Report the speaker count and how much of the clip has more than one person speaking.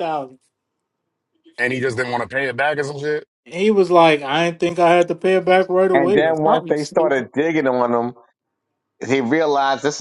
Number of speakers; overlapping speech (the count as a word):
three, about 13%